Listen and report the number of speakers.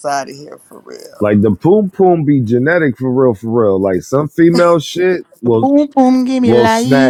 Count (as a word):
three